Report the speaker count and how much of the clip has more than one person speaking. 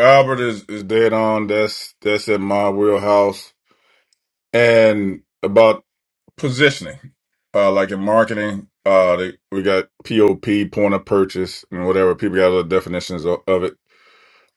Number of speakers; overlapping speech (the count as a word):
one, no overlap